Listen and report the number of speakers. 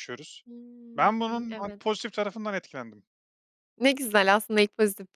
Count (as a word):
two